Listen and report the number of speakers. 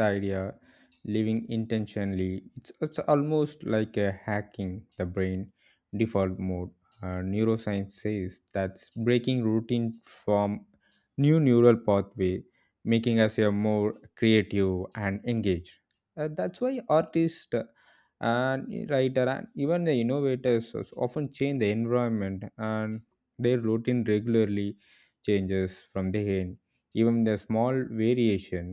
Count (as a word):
one